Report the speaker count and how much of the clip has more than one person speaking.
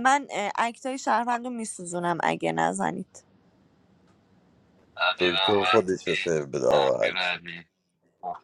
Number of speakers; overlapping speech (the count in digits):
3, about 11%